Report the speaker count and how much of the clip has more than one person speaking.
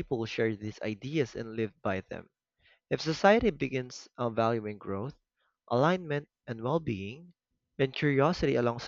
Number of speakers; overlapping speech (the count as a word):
one, no overlap